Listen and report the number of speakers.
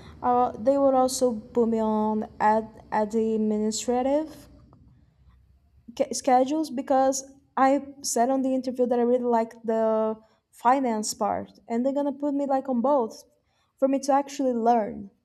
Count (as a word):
one